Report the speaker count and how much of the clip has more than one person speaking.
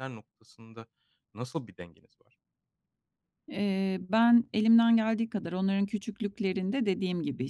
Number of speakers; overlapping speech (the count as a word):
two, no overlap